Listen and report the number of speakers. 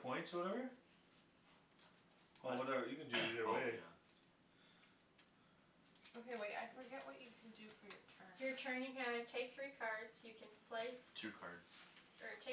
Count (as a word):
four